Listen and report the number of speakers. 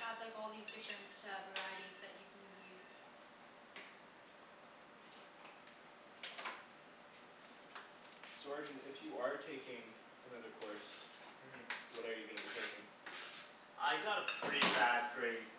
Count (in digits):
3